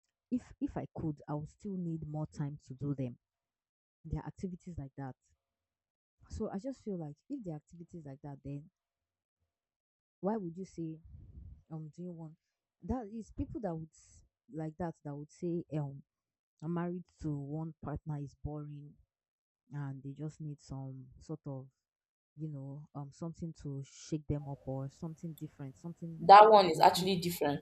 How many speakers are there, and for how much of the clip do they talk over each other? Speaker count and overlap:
two, about 1%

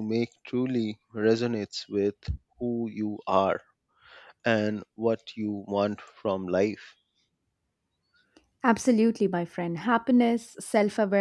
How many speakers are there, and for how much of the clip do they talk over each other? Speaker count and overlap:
two, no overlap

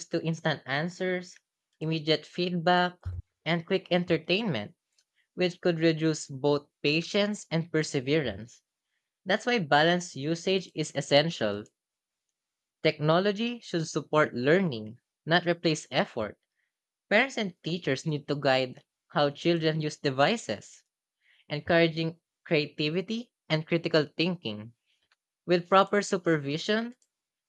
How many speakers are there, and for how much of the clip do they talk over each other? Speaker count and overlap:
one, no overlap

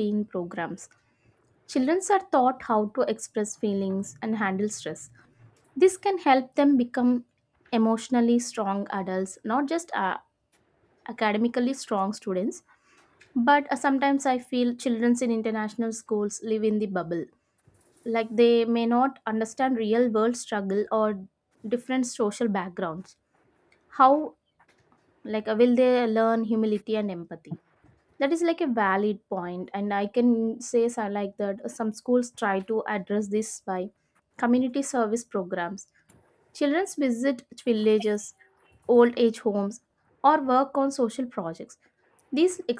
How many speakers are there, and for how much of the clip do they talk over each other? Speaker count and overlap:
one, no overlap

